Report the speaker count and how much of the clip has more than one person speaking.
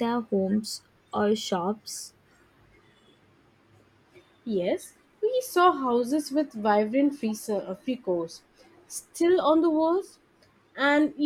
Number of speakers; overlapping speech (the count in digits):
2, no overlap